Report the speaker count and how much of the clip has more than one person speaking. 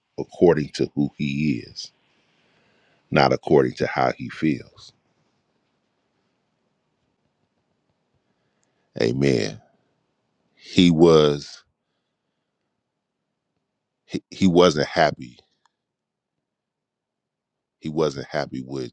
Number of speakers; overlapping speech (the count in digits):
1, no overlap